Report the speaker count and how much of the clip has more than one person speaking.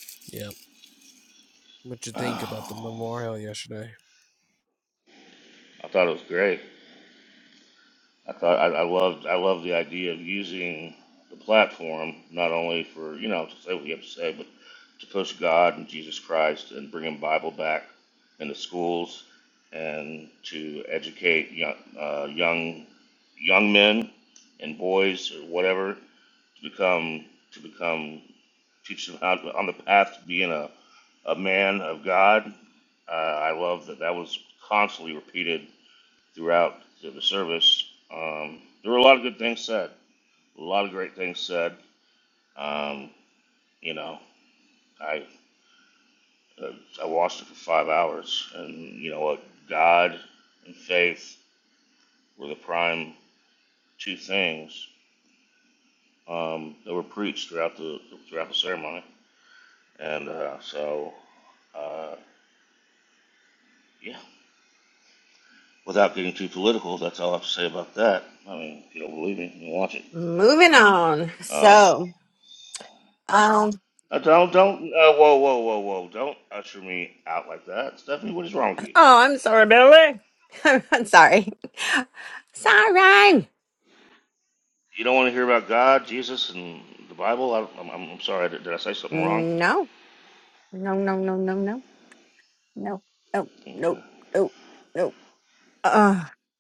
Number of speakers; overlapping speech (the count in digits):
3, about 2%